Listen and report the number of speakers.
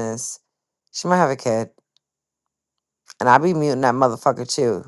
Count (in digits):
1